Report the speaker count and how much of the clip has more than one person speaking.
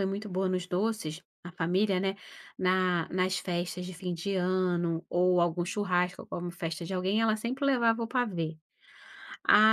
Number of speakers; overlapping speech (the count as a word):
one, no overlap